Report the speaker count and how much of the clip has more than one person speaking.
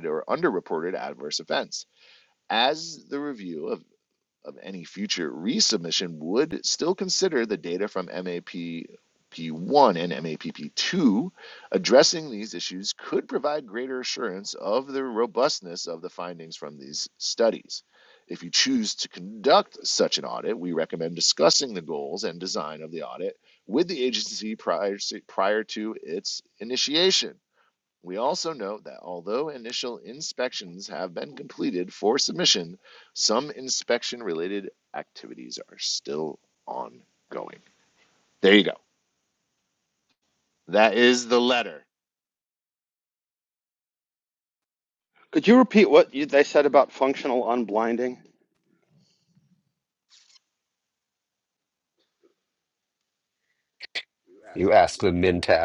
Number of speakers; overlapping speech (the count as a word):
three, no overlap